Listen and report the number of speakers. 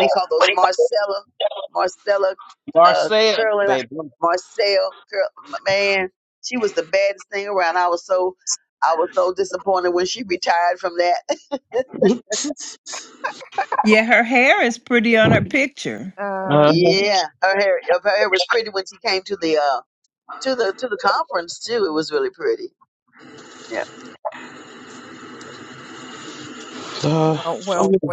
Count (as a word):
four